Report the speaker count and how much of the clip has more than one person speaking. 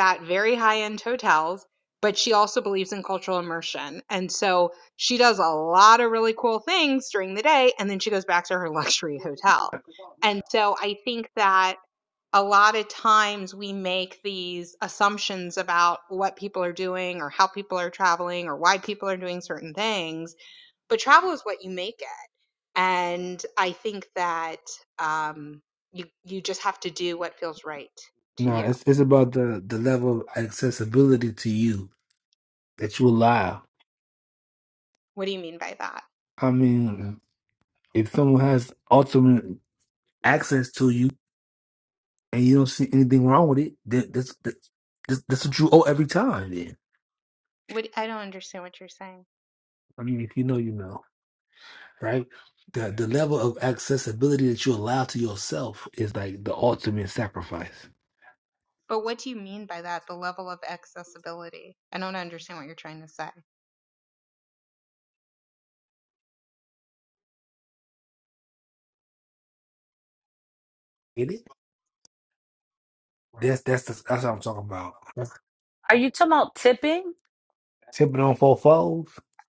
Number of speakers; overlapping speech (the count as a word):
three, under 1%